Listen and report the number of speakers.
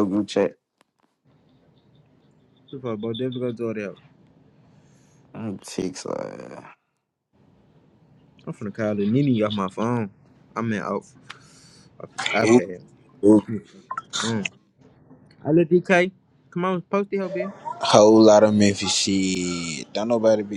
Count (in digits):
3